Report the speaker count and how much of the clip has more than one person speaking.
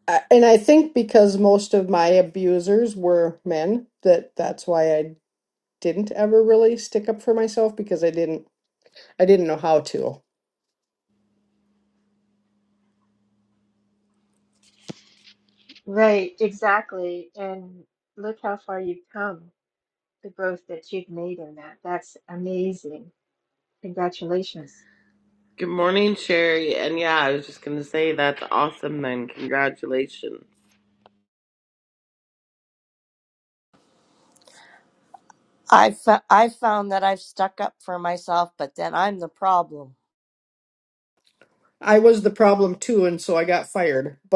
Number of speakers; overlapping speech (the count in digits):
4, no overlap